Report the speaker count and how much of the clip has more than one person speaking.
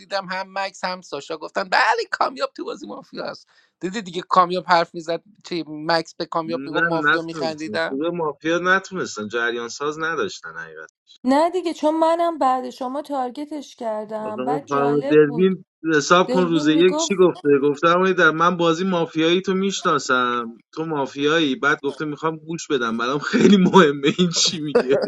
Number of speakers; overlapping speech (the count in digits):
3, about 14%